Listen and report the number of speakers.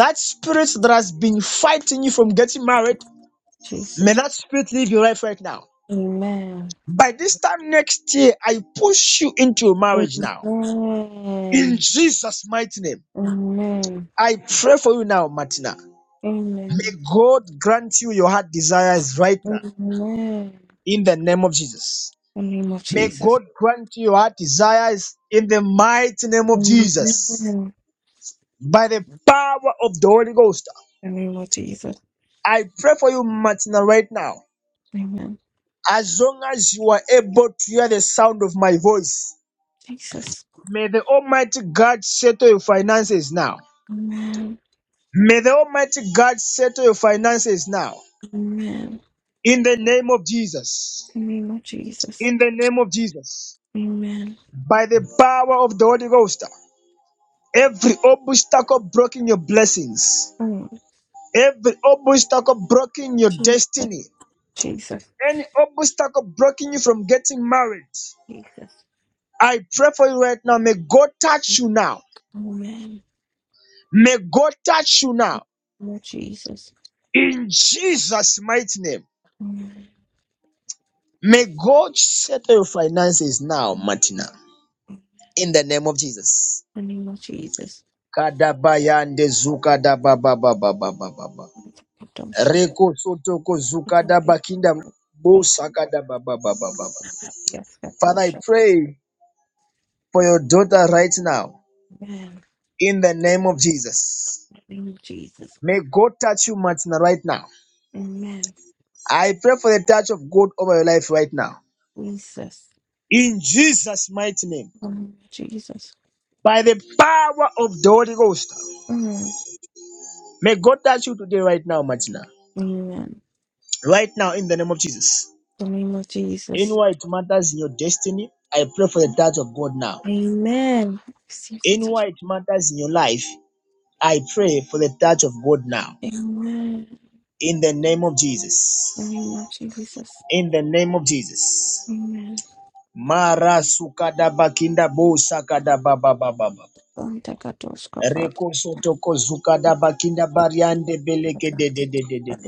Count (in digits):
2